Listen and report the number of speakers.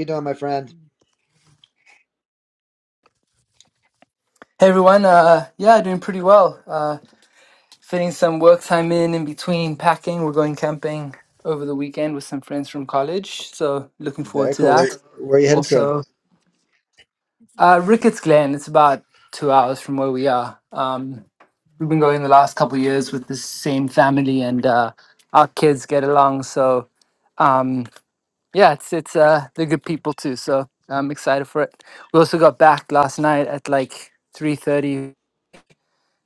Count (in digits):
2